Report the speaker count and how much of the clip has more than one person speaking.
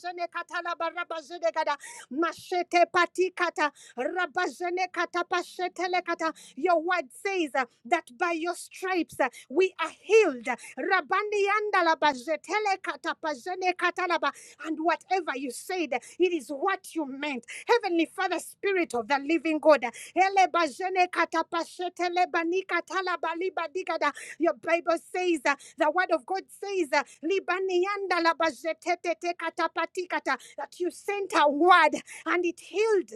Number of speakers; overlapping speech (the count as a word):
one, no overlap